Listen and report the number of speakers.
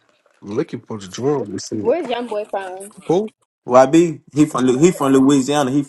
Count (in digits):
3